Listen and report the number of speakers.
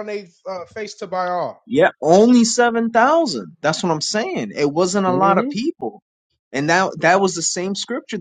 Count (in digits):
2